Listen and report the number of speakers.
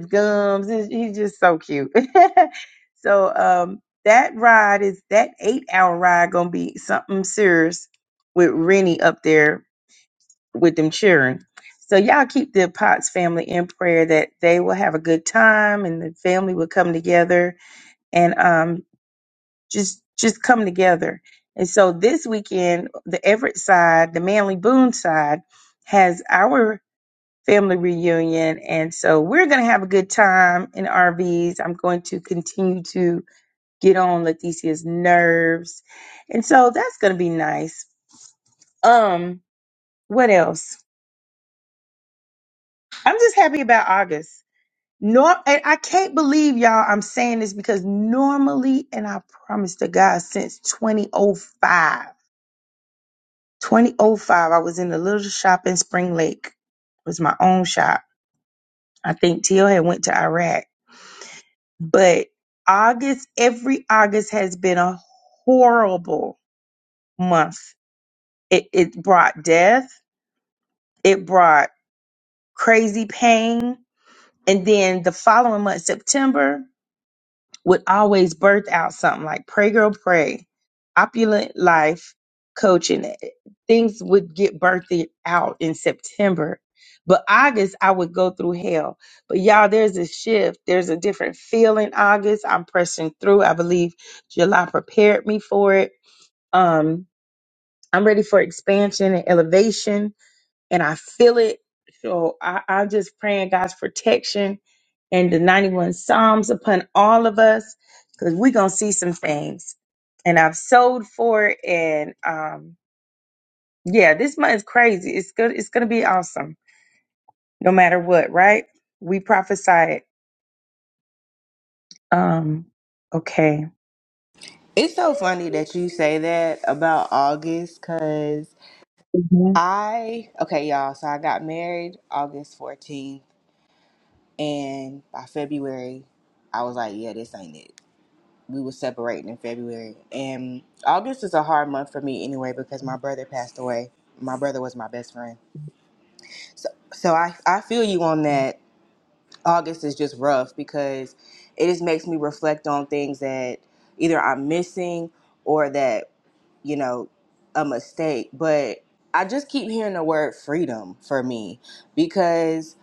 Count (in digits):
2